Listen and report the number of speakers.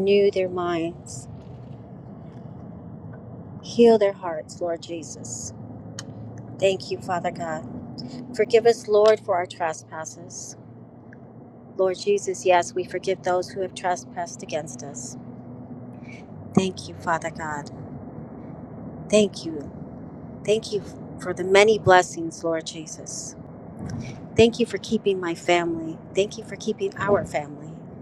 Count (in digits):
1